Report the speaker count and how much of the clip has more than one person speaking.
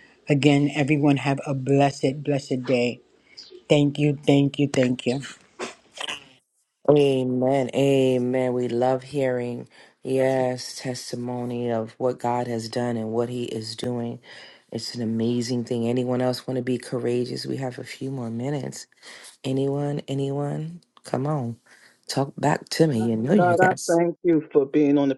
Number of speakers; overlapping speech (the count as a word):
three, about 2%